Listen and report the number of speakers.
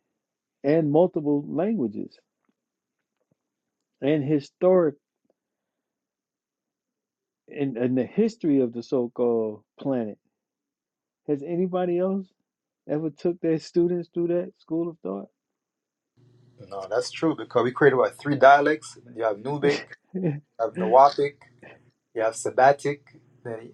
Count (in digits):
2